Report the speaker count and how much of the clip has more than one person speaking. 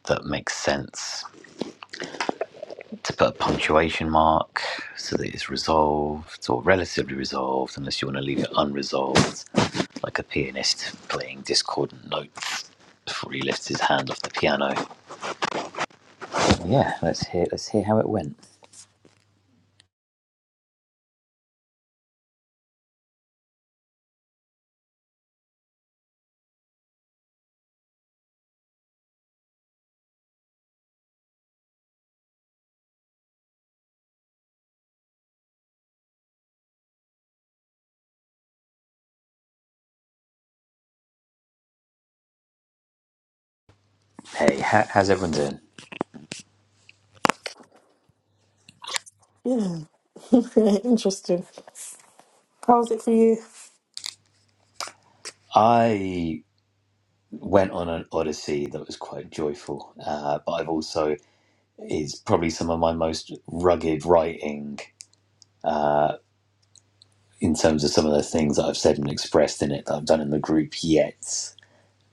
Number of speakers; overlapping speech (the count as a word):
two, no overlap